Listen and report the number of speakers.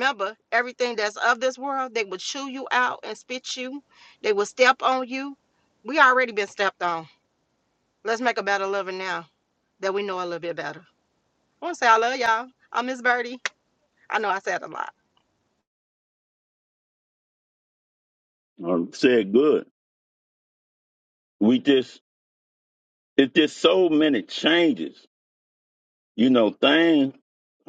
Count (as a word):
two